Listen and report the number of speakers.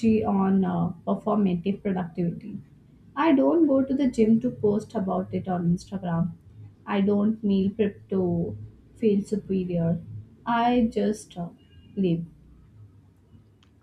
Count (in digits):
1